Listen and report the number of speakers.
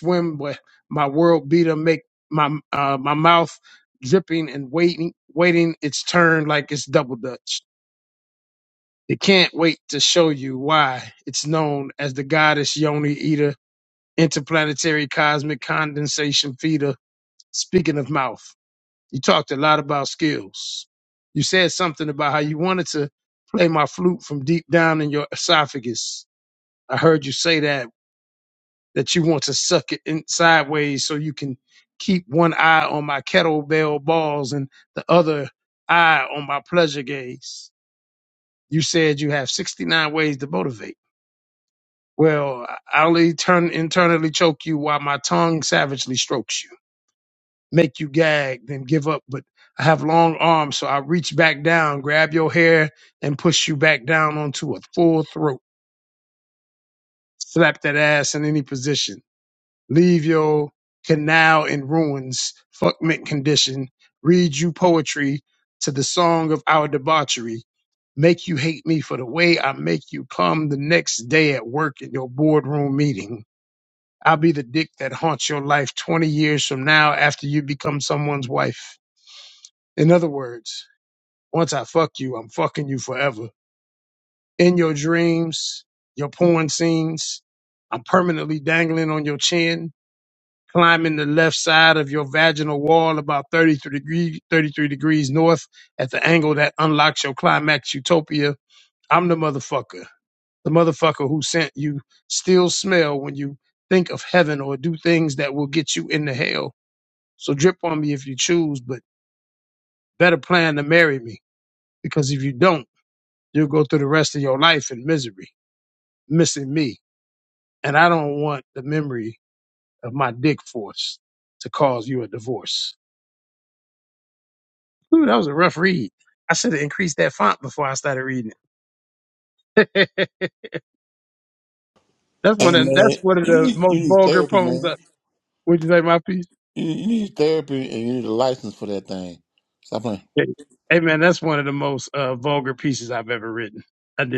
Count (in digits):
2